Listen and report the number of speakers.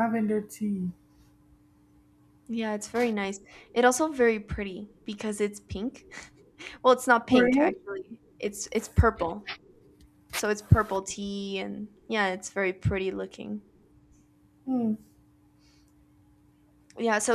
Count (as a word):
two